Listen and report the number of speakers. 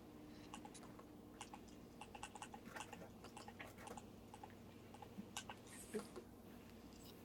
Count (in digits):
0